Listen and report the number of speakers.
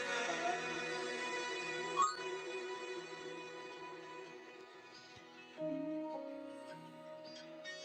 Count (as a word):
zero